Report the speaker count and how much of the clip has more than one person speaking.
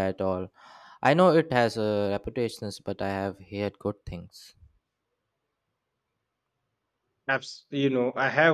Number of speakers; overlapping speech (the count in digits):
2, no overlap